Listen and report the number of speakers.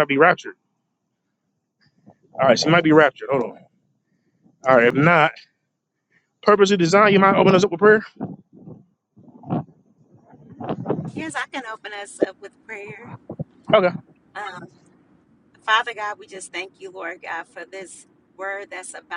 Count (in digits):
2